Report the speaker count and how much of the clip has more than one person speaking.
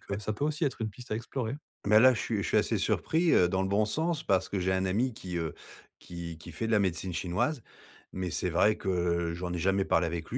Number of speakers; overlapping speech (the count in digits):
2, about 1%